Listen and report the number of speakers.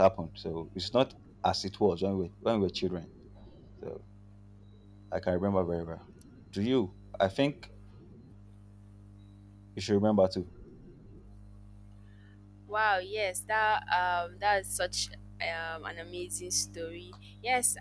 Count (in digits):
2